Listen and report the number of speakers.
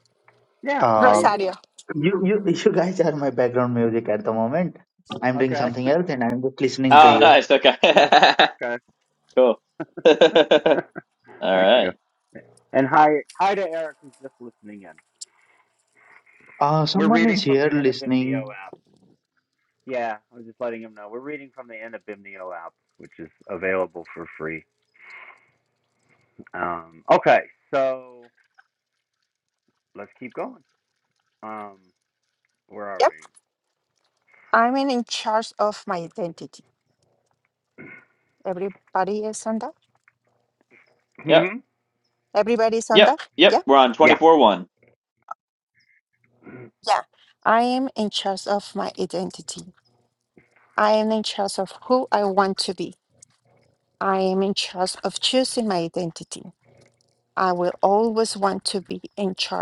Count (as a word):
four